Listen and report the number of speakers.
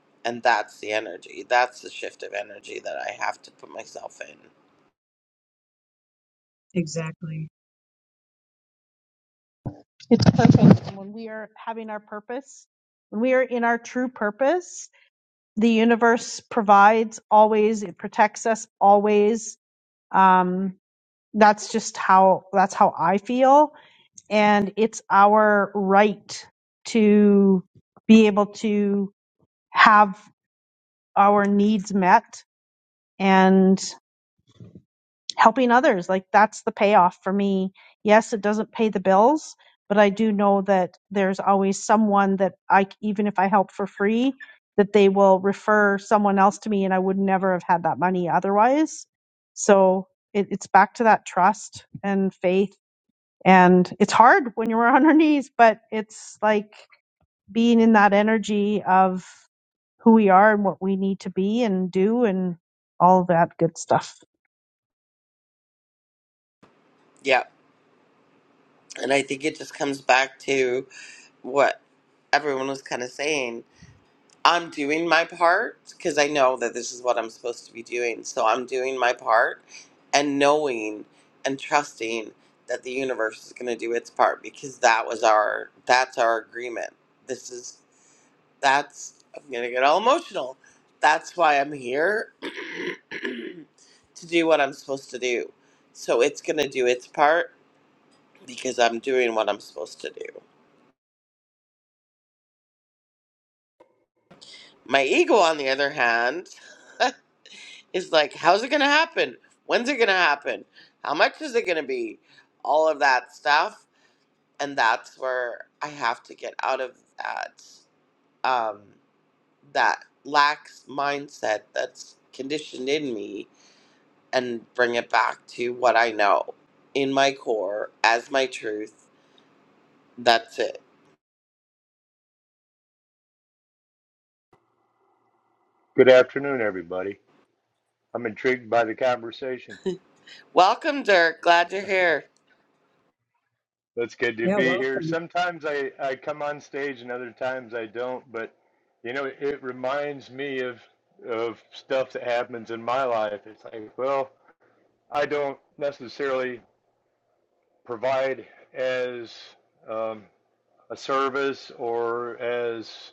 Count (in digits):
4